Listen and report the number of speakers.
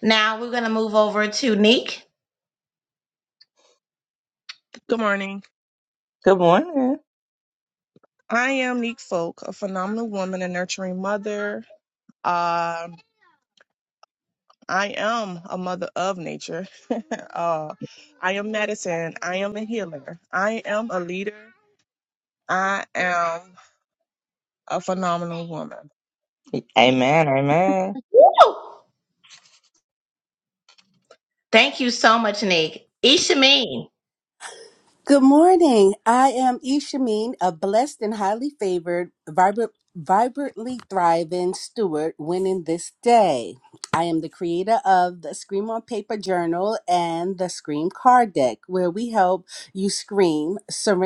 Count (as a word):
four